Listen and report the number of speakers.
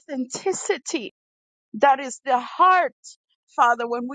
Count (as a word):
one